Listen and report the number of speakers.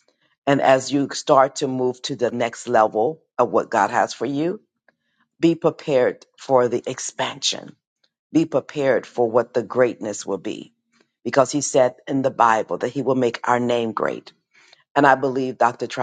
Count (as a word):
one